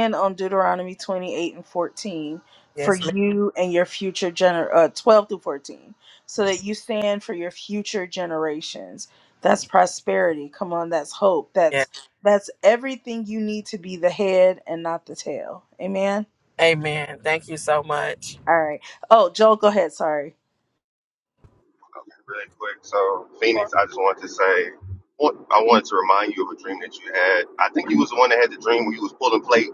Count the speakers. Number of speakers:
3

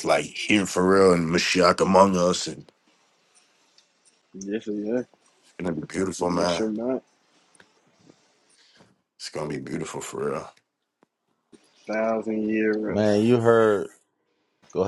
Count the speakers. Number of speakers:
3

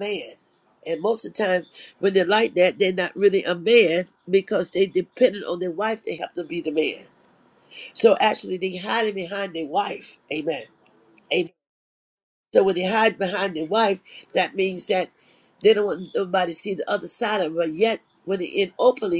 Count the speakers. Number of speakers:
1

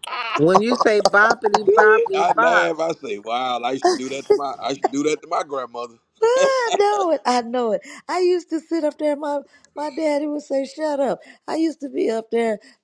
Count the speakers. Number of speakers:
3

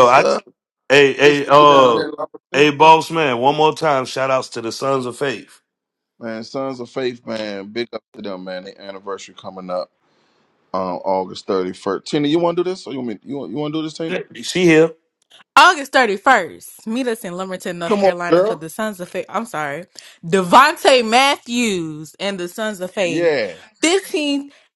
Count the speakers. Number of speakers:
3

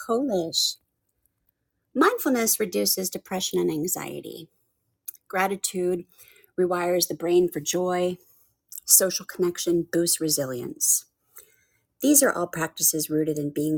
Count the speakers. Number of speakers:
1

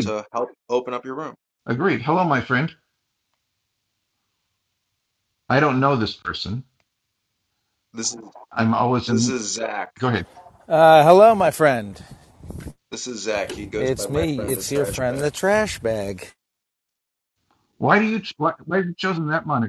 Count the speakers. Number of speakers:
3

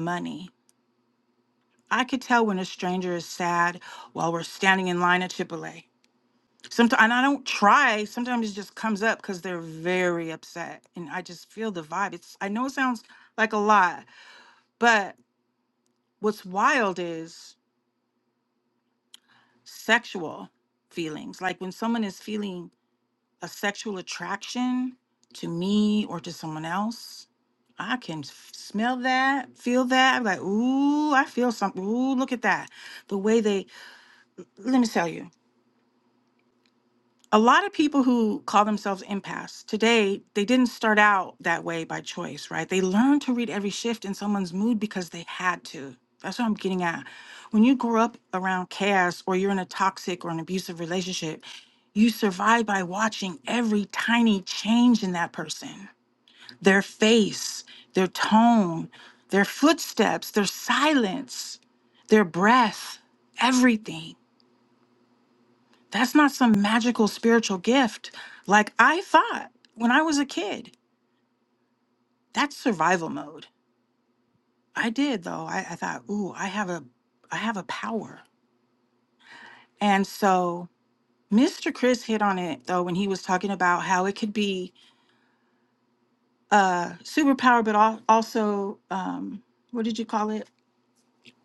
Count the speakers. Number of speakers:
1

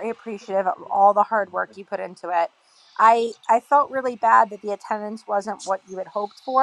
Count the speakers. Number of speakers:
1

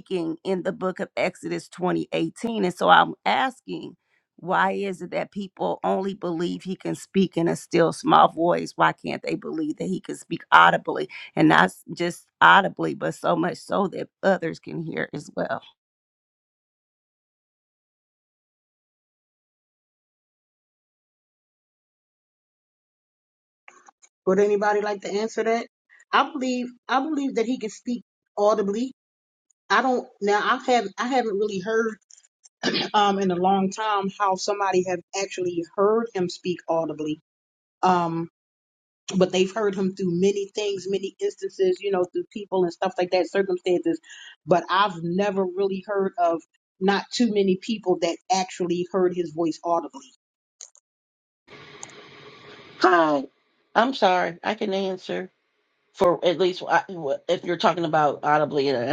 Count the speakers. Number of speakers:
3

